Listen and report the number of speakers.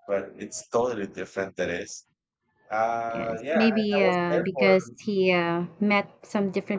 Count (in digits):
2